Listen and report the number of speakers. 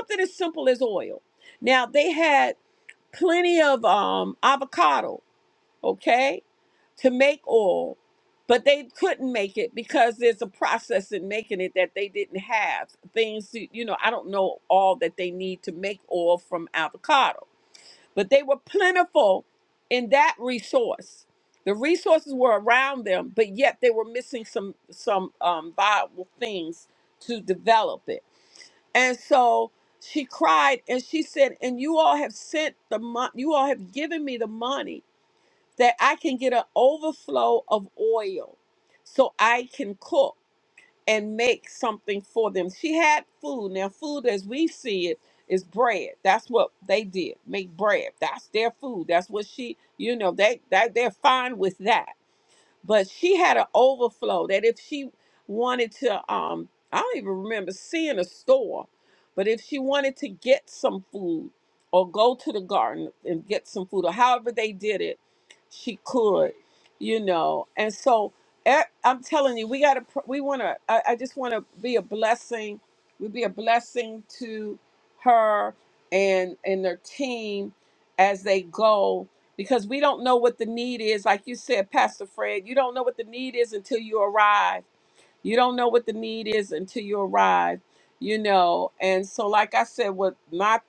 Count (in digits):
1